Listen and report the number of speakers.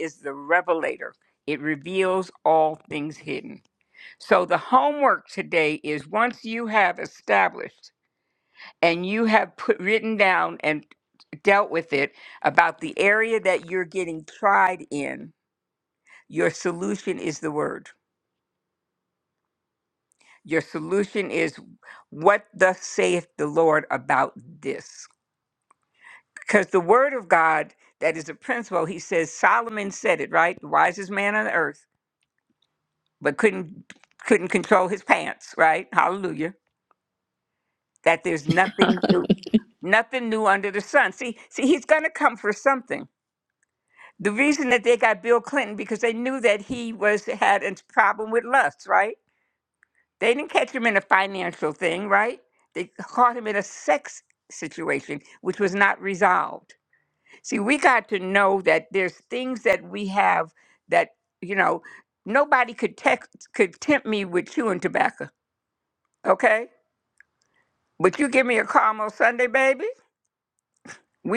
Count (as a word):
one